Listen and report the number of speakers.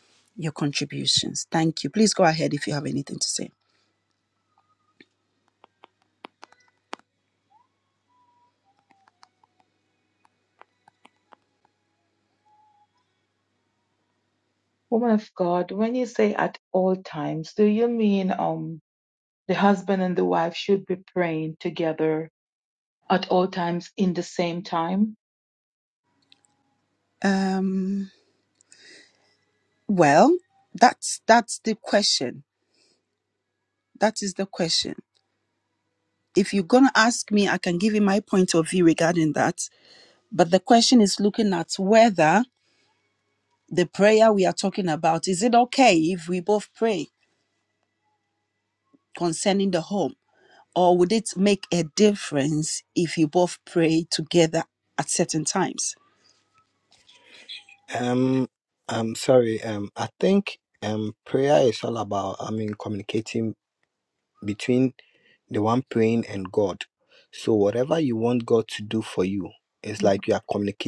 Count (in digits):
3